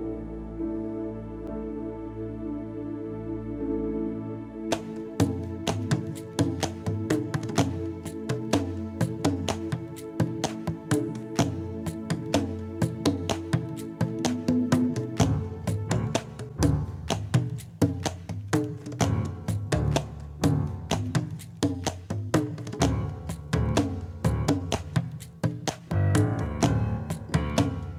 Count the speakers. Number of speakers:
0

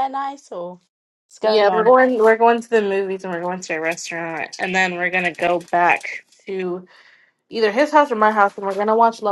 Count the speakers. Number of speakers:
2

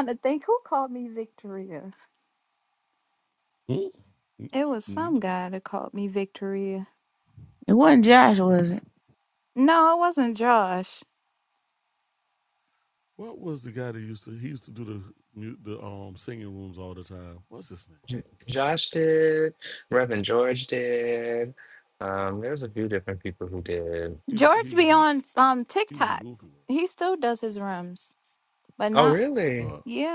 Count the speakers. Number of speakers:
4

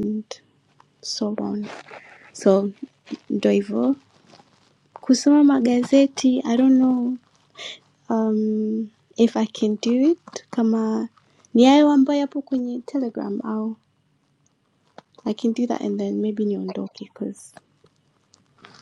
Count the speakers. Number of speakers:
1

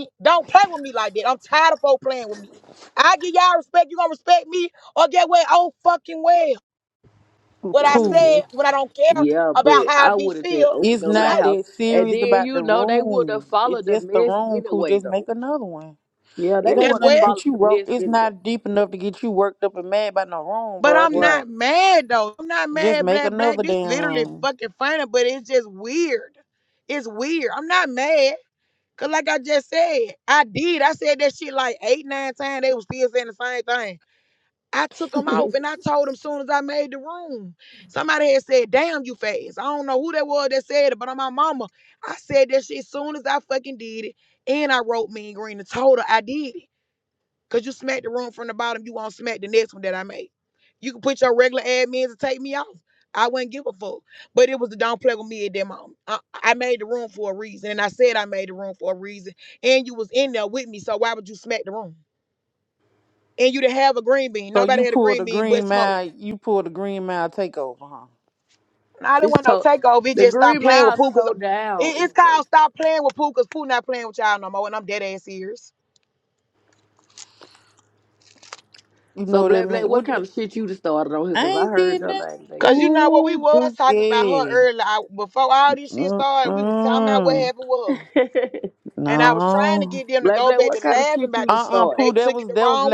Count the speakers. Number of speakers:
3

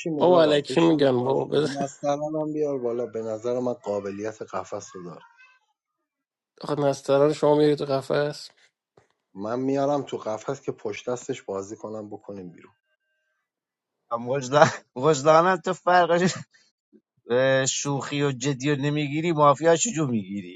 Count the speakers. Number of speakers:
3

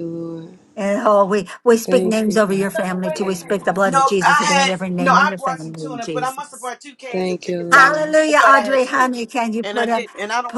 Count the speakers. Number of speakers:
3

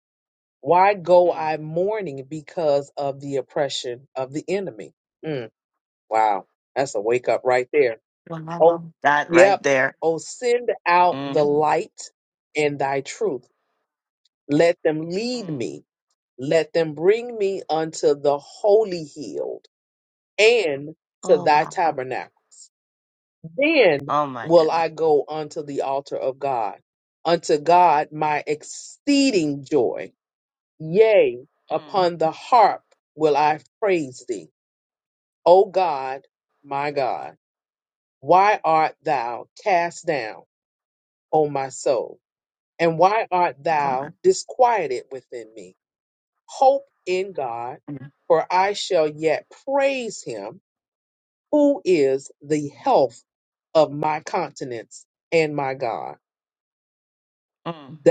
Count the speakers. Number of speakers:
2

